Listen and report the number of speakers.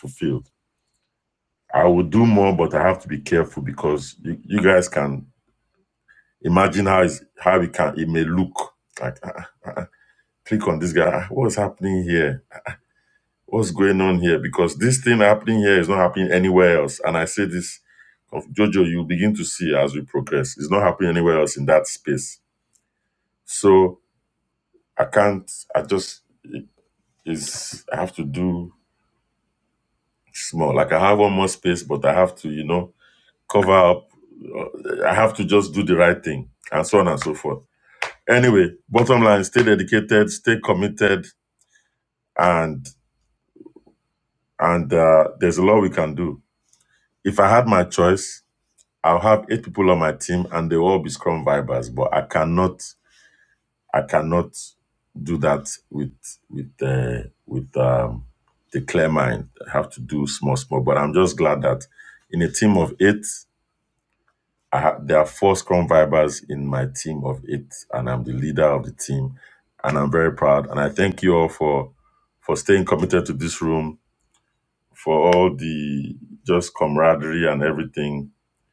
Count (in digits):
1